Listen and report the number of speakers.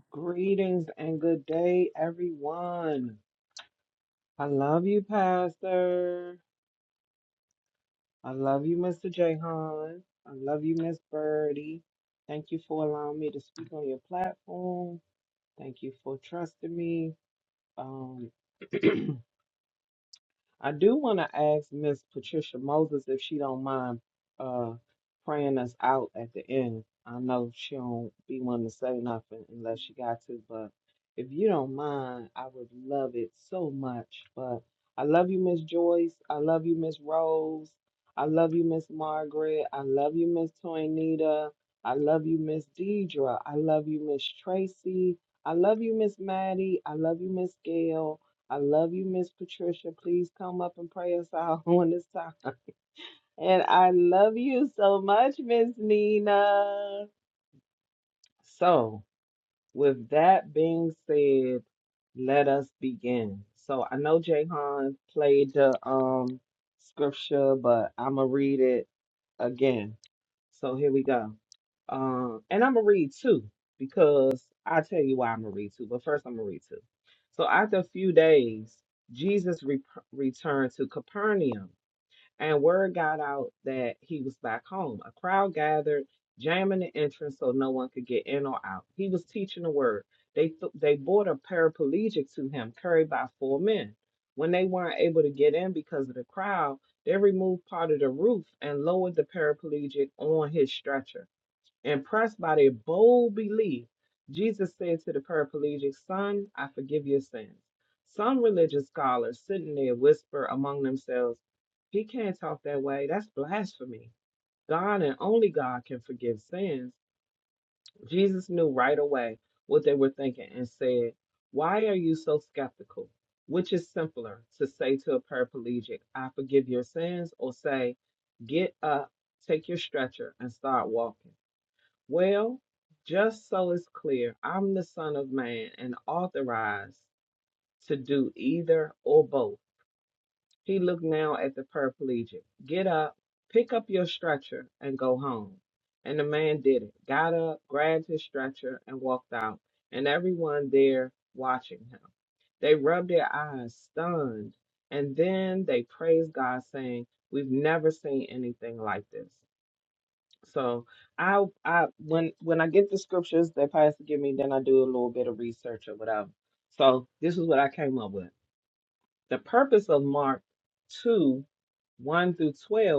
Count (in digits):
1